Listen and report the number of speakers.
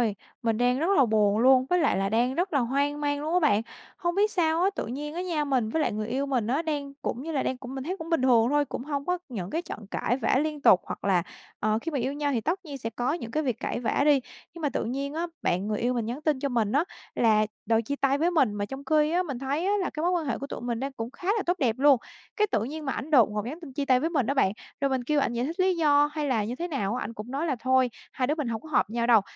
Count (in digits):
1